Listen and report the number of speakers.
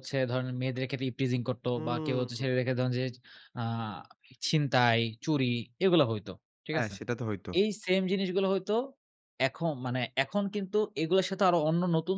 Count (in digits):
2